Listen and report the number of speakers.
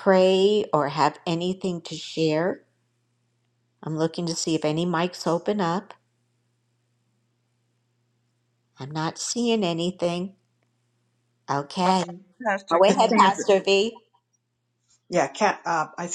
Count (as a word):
three